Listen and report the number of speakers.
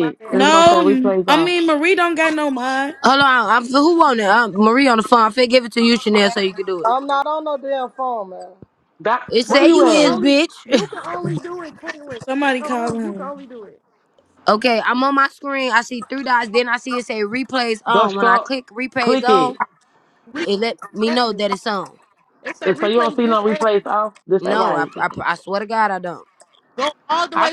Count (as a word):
five